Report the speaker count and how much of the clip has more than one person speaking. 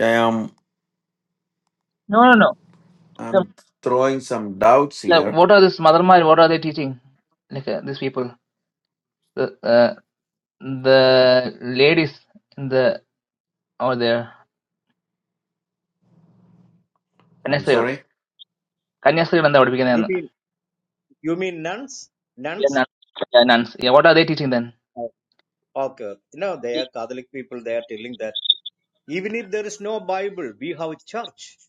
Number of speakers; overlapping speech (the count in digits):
3, about 4%